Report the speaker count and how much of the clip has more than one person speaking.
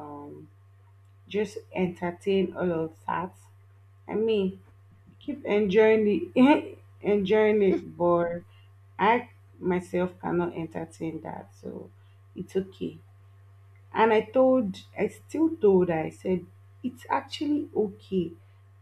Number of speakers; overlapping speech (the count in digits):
1, no overlap